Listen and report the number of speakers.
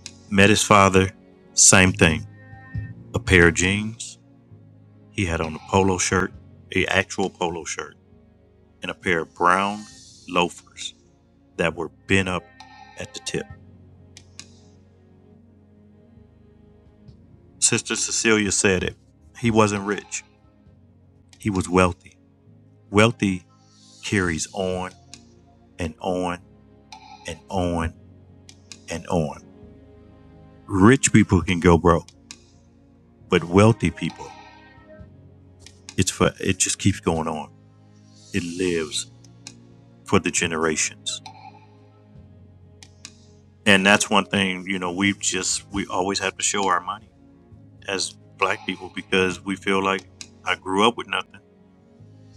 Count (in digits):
1